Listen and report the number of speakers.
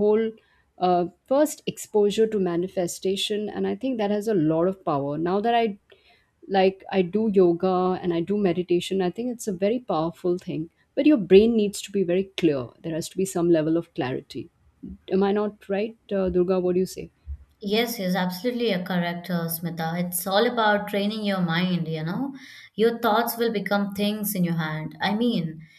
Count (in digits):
2